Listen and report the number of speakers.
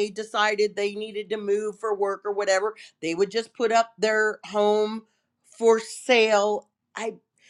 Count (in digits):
1